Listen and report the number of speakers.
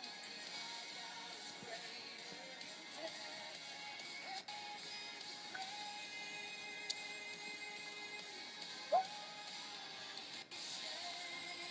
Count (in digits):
0